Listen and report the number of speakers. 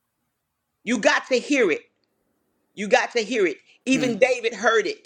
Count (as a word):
one